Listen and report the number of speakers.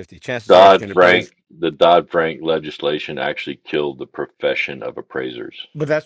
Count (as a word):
two